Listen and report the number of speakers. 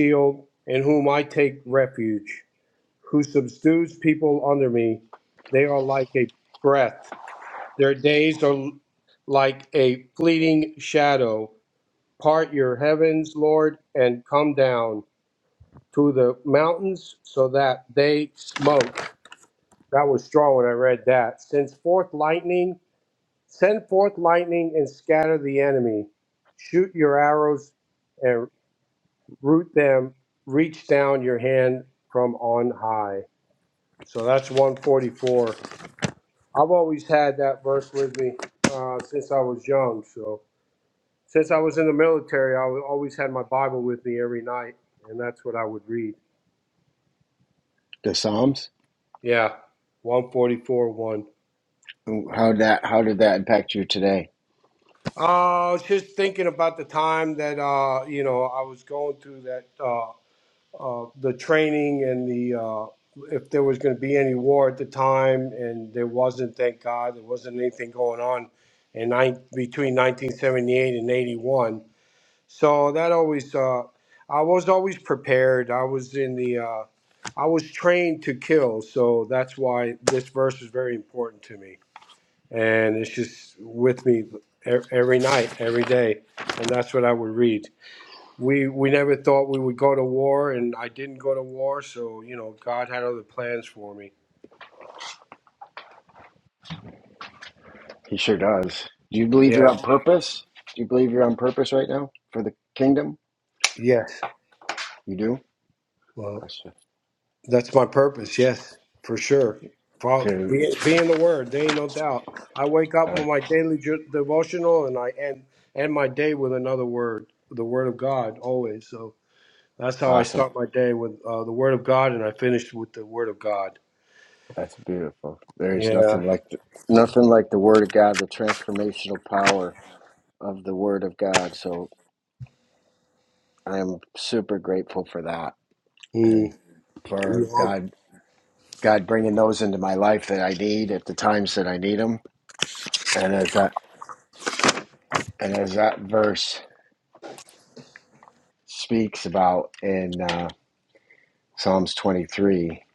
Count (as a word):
two